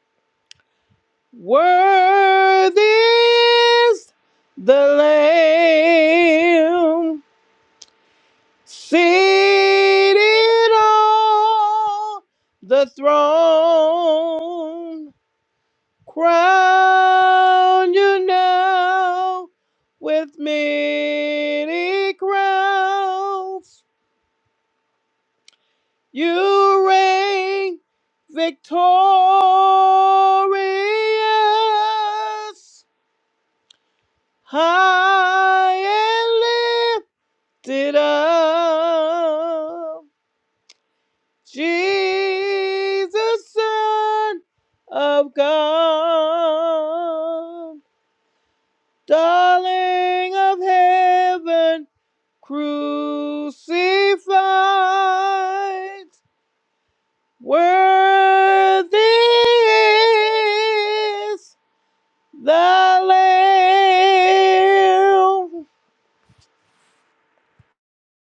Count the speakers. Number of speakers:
1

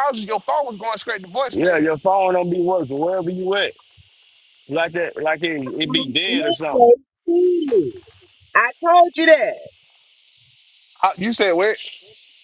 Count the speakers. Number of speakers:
3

